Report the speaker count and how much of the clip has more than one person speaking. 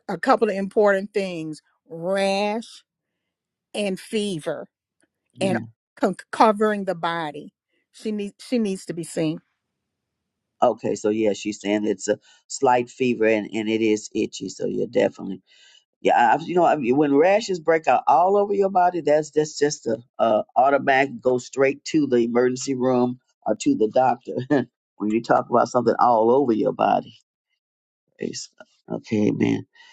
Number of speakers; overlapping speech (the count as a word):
two, about 1%